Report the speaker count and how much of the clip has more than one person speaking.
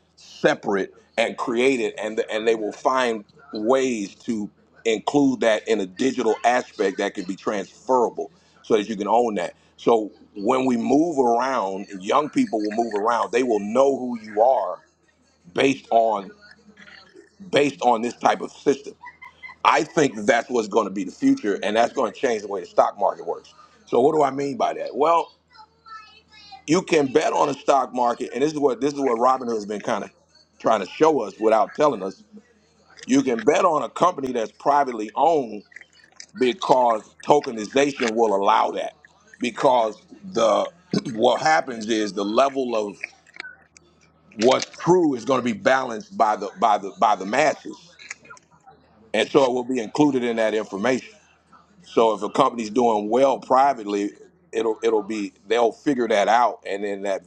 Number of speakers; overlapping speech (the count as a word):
one, no overlap